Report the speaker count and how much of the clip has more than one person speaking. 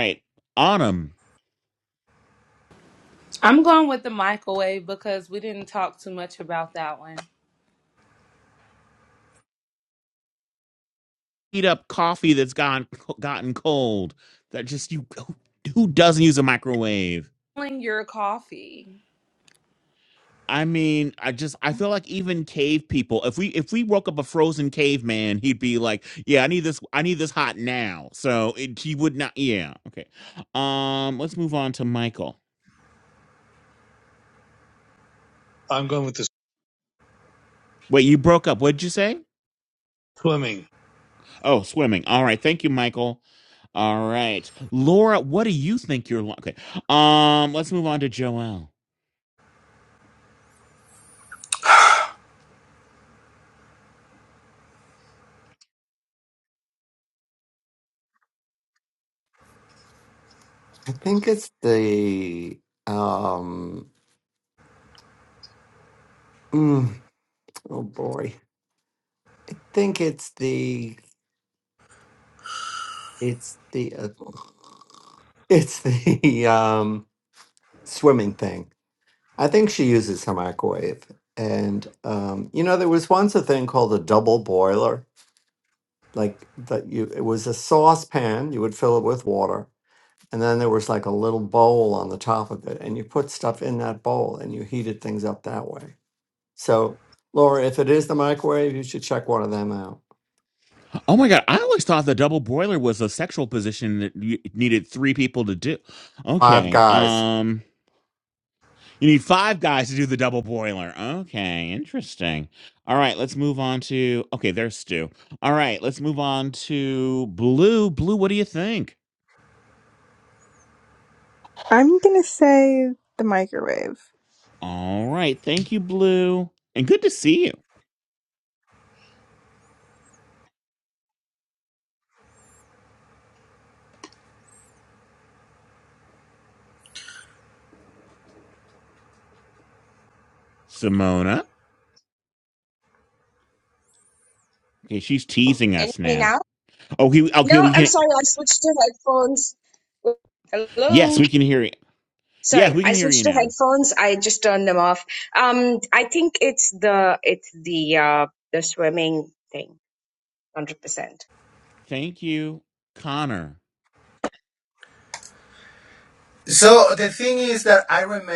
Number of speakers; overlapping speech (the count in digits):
7, about 2%